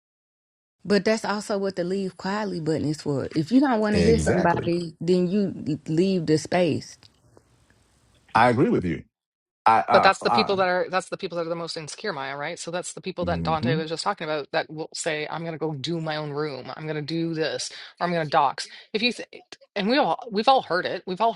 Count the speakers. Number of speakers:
three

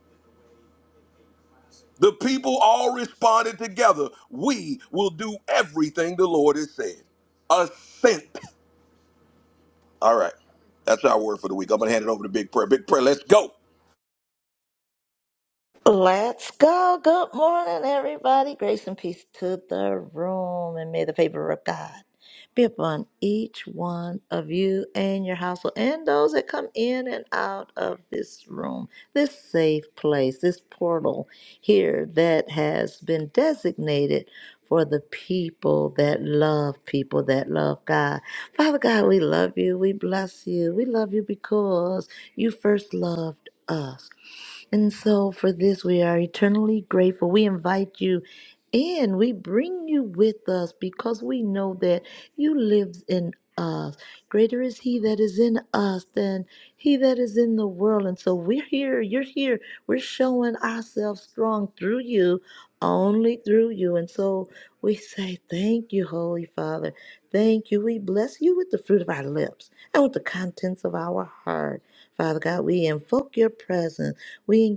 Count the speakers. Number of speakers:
two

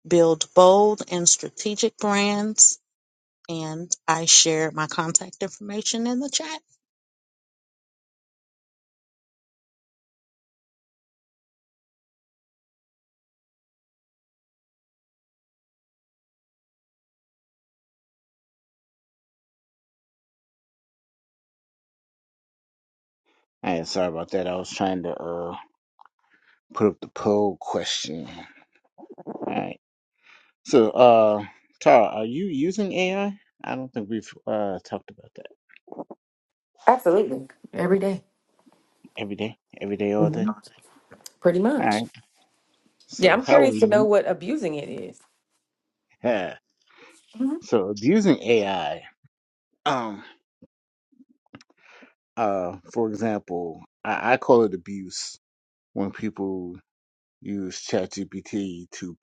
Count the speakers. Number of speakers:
three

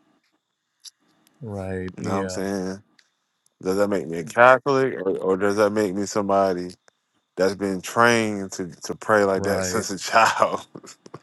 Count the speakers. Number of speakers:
two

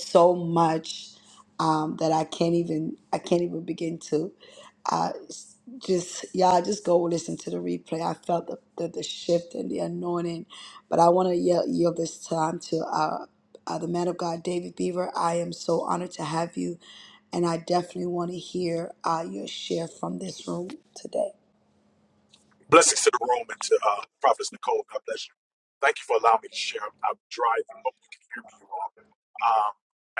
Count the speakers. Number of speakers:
two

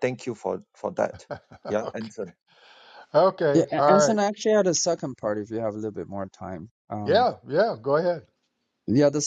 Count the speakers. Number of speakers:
three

